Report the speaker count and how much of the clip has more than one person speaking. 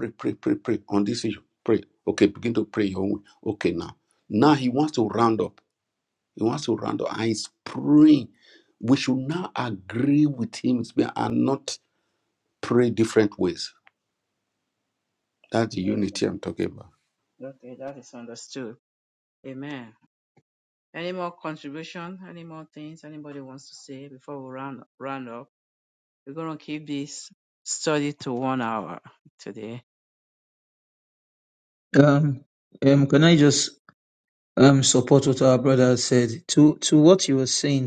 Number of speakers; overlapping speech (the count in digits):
3, about 1%